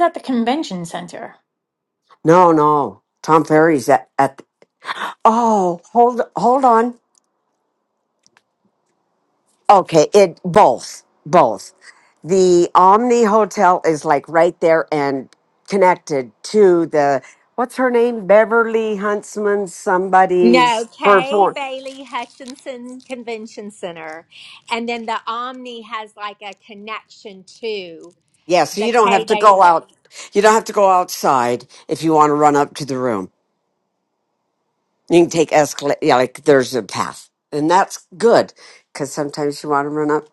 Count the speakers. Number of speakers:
three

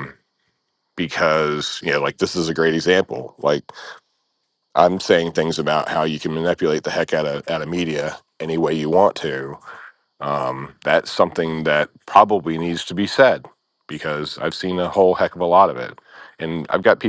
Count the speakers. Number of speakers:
one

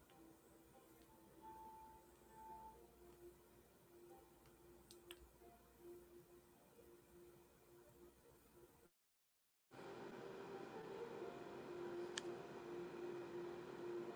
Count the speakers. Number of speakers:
zero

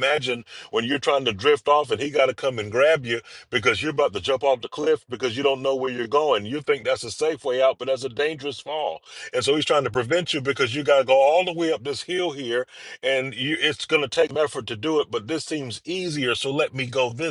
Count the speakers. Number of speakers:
one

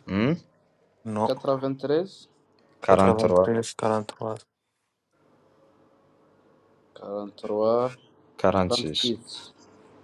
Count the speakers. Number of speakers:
three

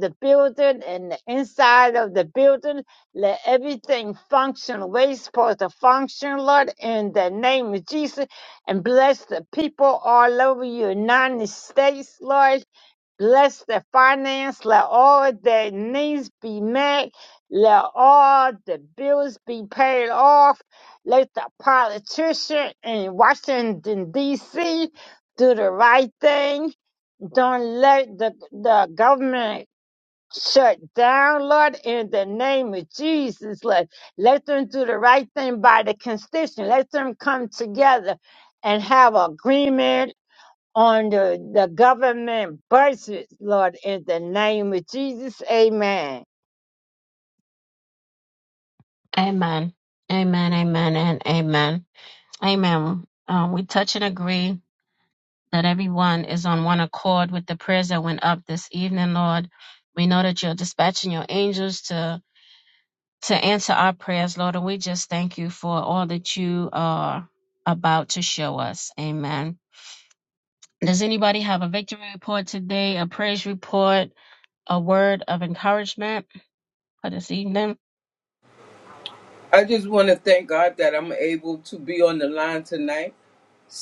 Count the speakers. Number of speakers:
three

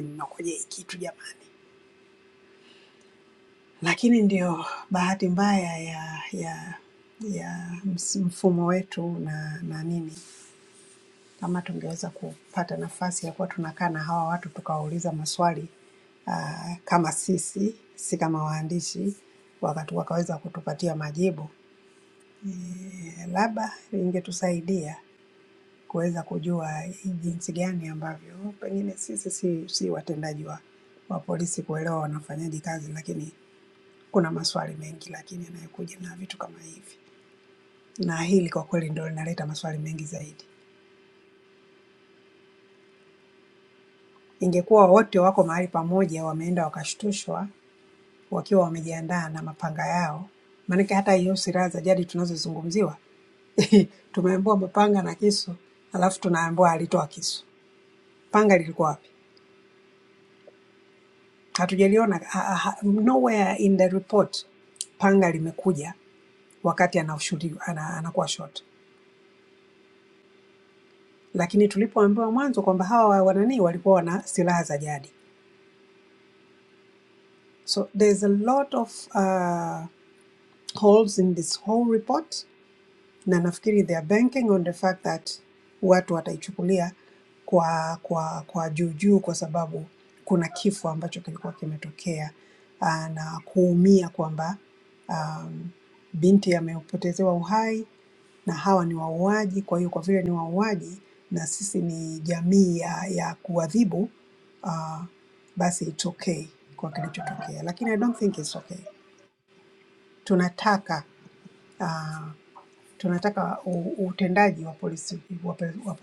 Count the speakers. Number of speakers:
one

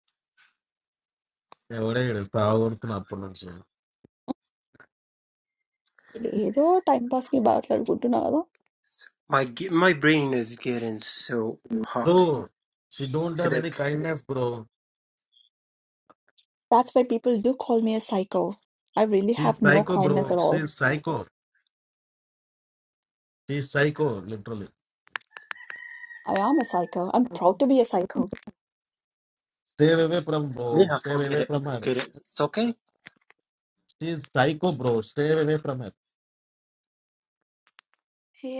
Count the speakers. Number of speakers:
three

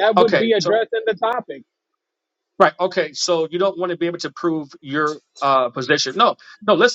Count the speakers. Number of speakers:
two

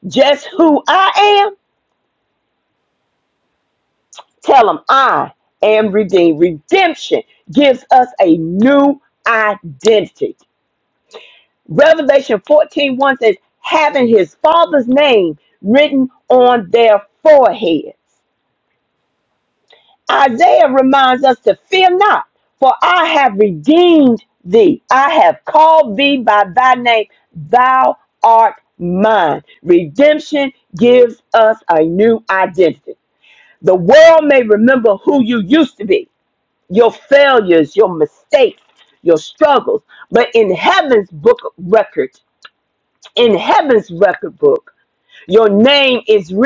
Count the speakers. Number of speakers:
one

